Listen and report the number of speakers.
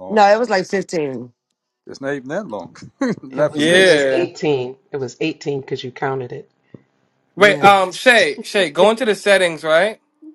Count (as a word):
four